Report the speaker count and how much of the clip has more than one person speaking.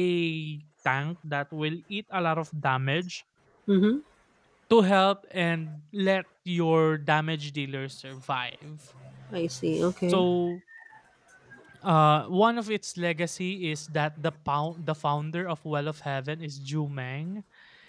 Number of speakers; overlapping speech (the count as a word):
two, about 1%